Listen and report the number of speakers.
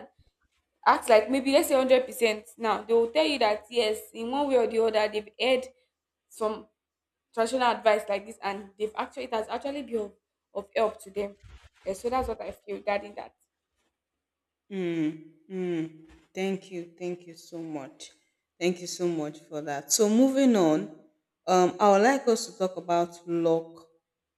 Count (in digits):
2